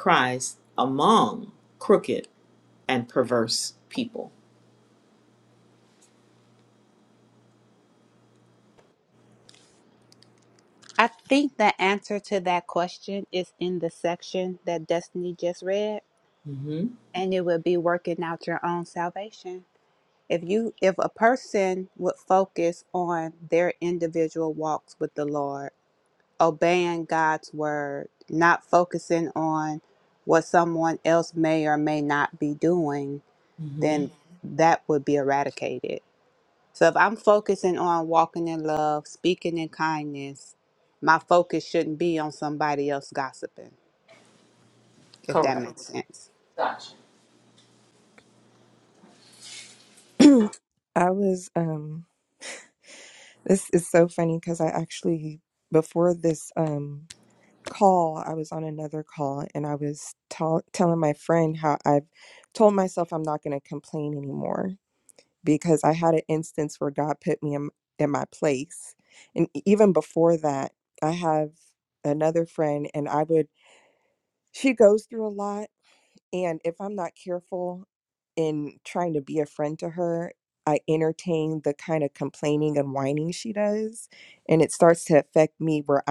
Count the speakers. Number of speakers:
three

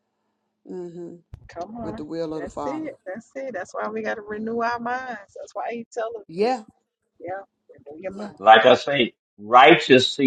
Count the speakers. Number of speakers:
three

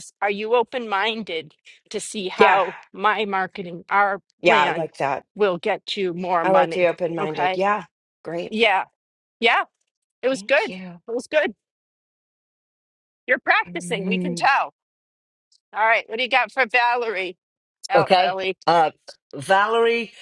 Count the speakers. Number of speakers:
three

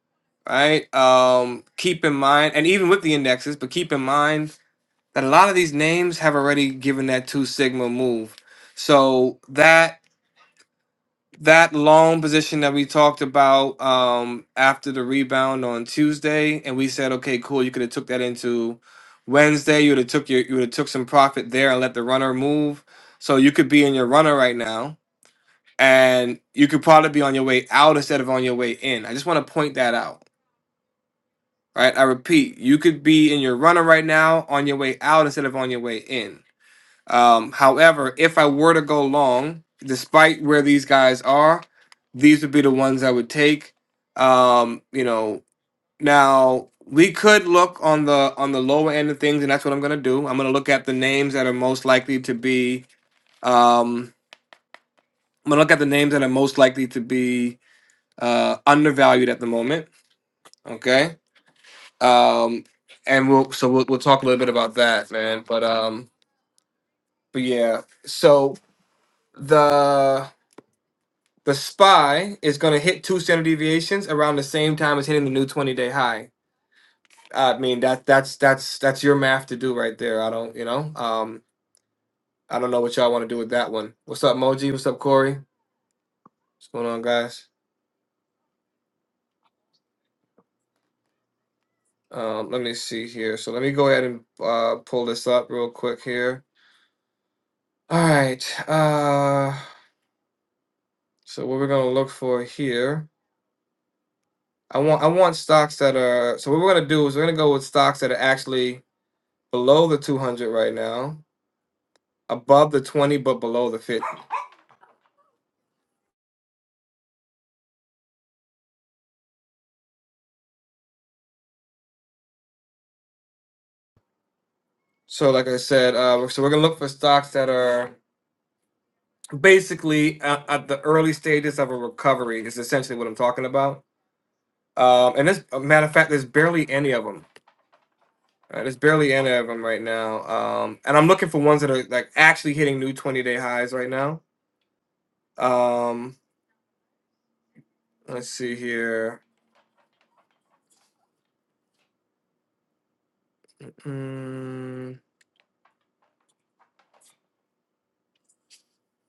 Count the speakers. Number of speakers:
one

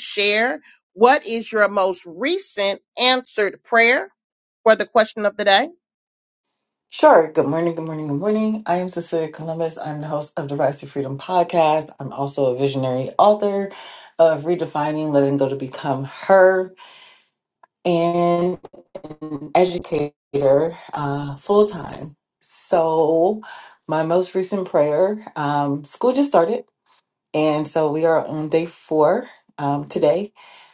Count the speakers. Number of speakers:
two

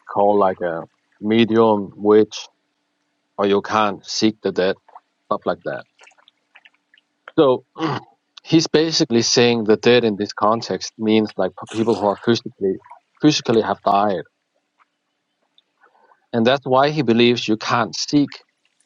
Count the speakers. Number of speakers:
one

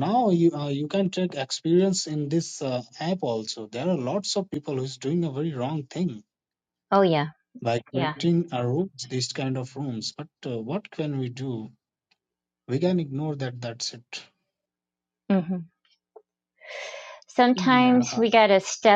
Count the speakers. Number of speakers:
two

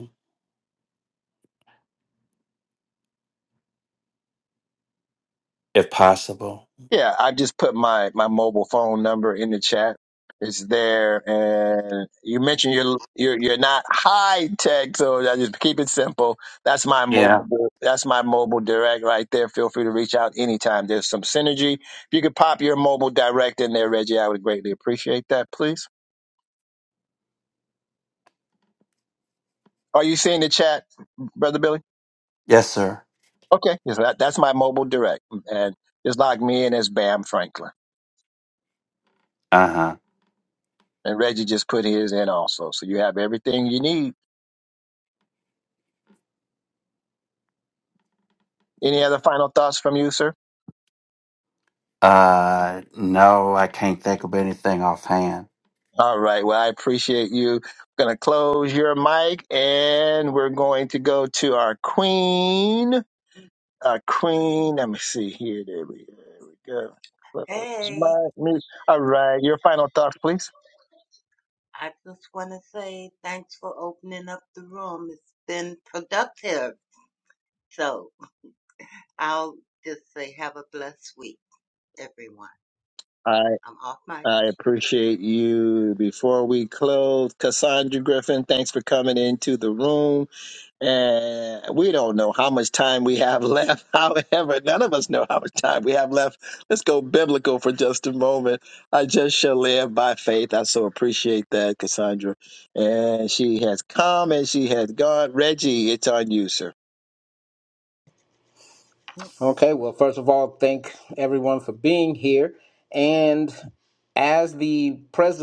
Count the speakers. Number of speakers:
four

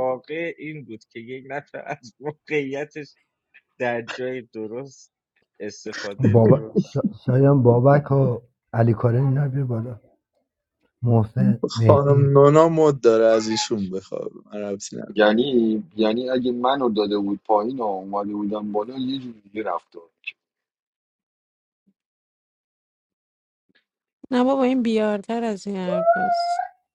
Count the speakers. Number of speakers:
five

